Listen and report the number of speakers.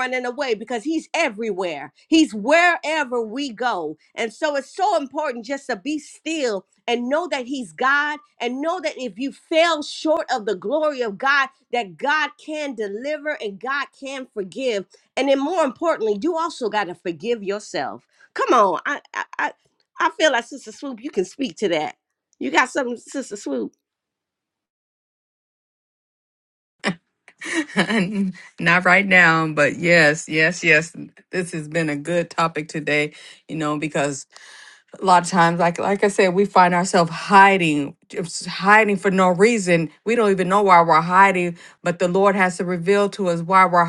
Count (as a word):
two